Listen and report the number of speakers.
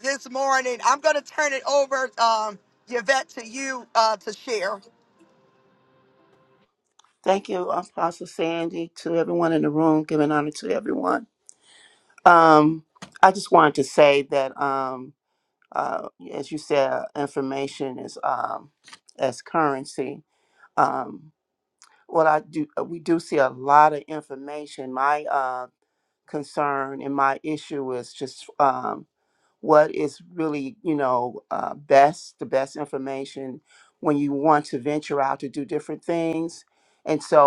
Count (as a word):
two